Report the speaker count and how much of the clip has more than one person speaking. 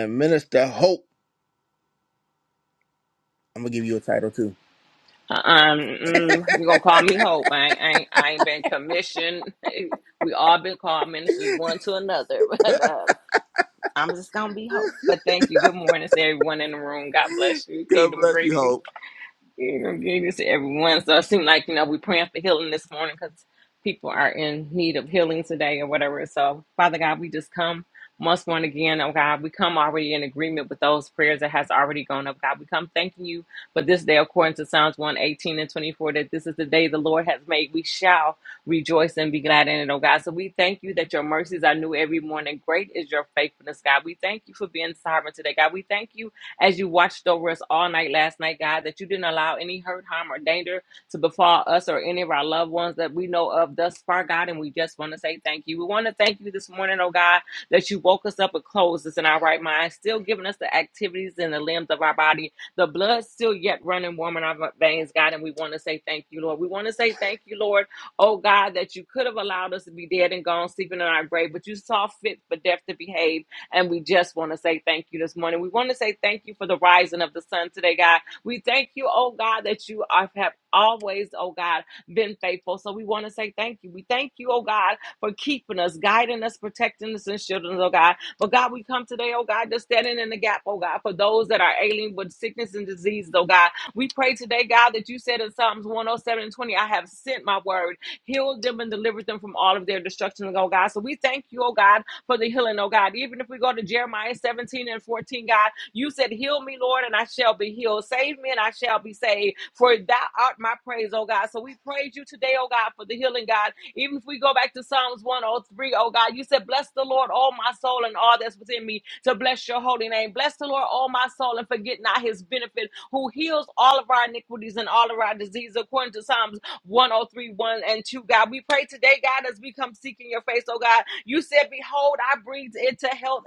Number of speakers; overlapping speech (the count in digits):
2, about 1%